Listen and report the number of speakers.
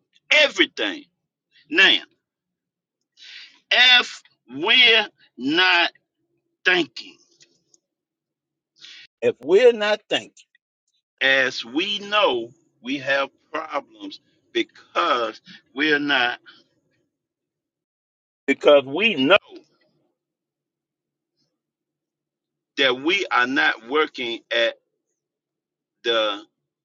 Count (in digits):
1